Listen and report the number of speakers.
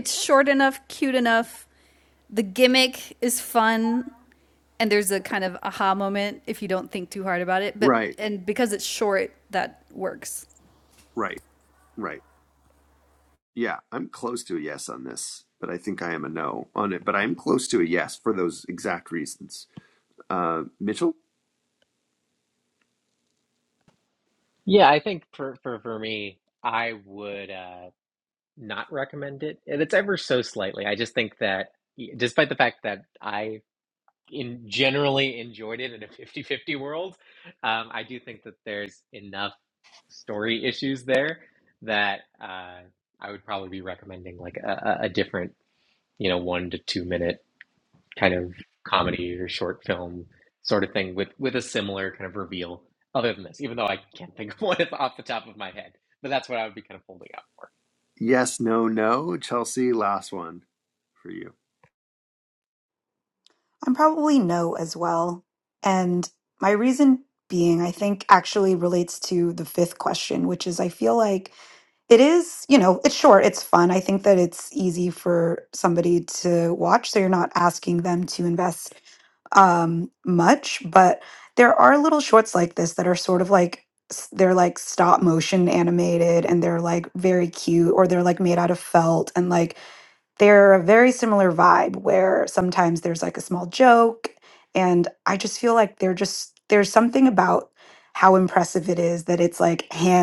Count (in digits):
4